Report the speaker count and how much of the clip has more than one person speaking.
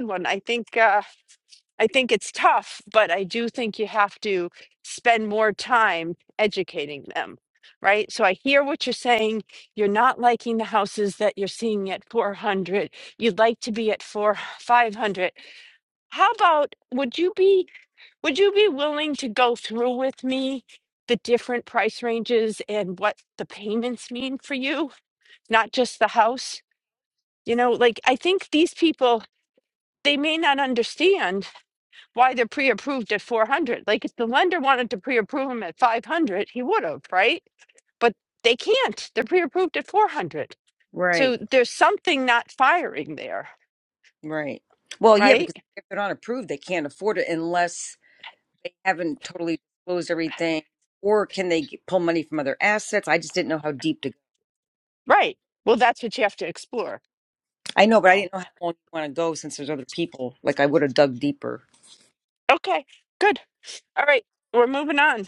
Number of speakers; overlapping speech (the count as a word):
two, about 1%